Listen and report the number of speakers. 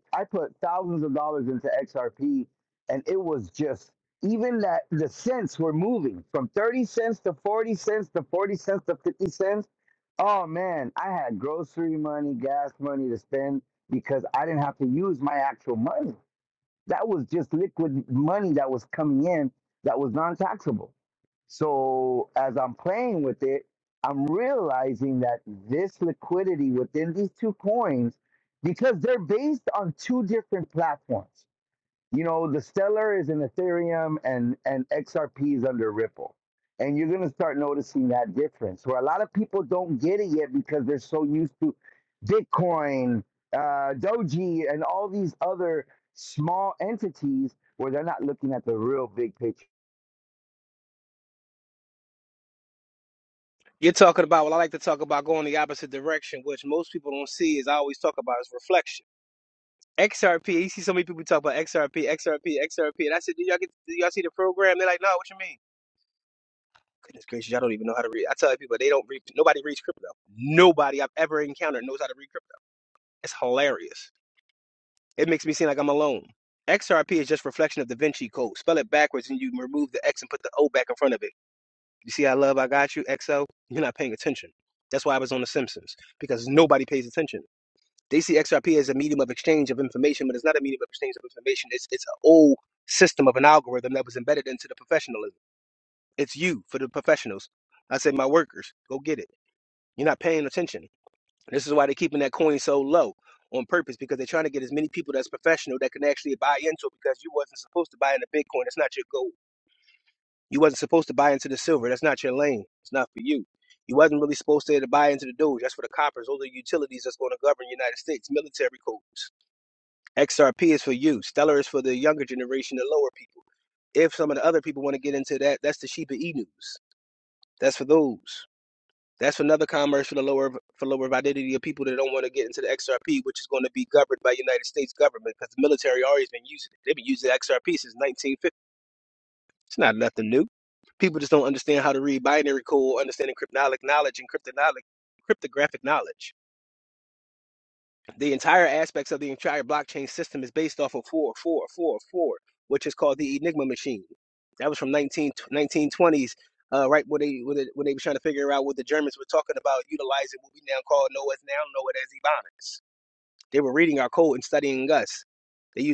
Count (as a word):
two